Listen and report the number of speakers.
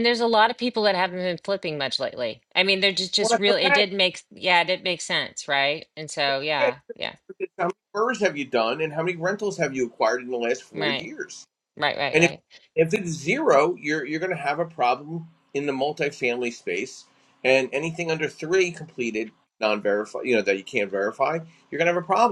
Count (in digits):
2